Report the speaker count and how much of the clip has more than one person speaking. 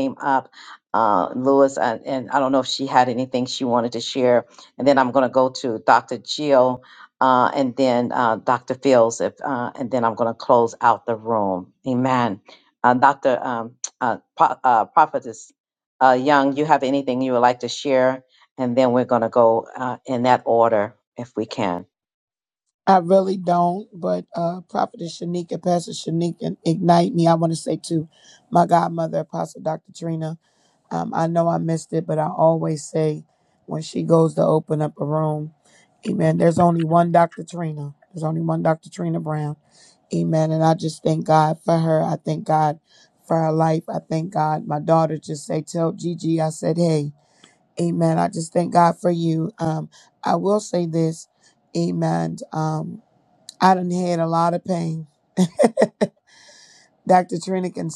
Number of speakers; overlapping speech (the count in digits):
2, no overlap